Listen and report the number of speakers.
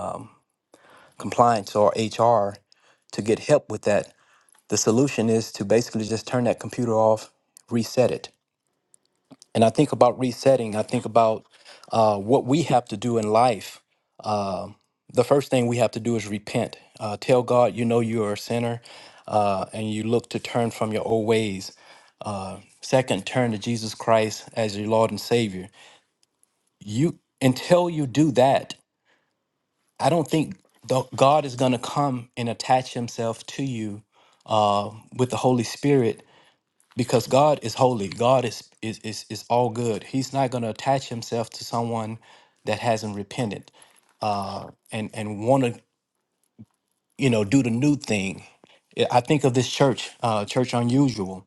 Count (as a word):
one